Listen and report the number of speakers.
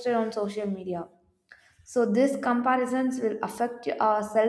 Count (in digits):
1